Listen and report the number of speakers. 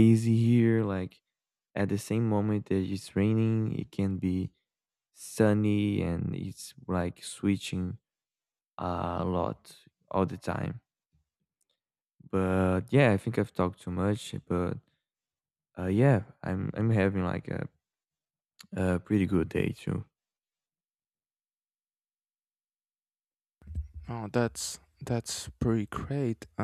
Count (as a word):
two